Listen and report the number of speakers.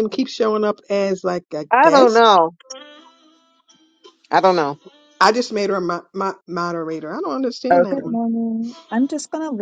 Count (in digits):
3